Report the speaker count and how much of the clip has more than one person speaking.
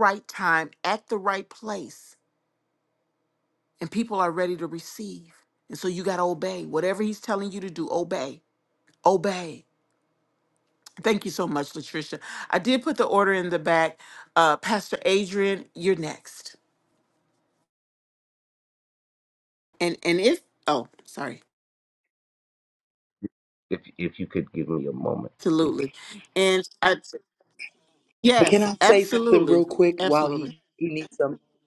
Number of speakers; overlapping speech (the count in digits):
3, about 6%